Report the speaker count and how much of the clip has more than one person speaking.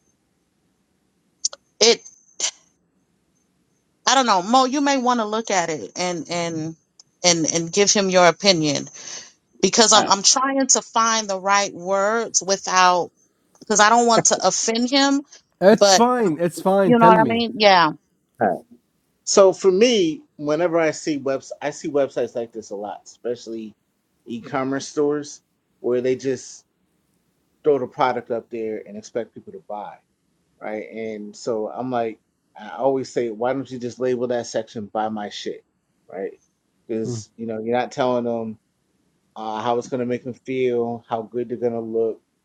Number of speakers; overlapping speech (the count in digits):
3, about 3%